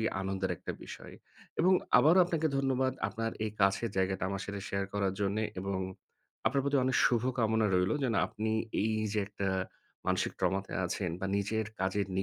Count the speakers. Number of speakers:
one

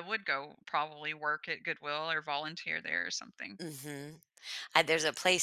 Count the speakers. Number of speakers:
two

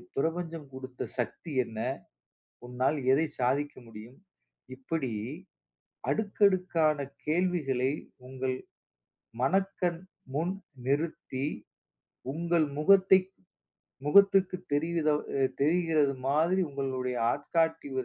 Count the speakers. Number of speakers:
one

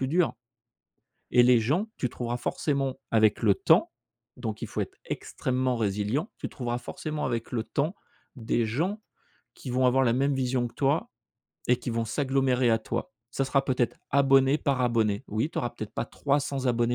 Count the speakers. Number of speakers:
one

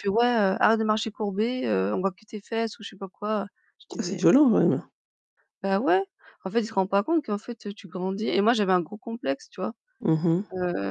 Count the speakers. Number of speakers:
two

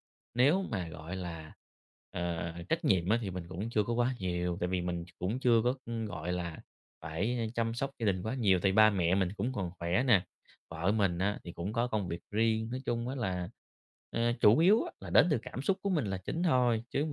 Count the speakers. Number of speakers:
one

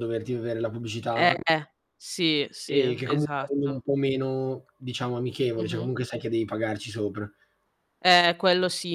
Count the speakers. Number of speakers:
two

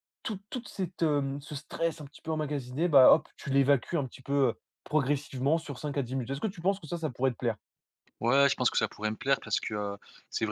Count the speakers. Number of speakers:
two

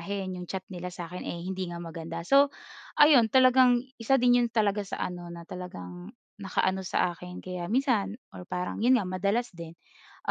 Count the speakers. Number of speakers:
one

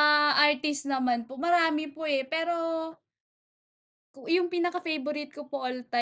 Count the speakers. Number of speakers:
one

